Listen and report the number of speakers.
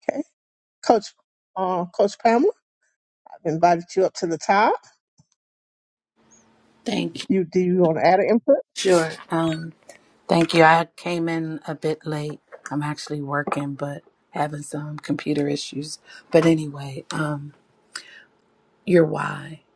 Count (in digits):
2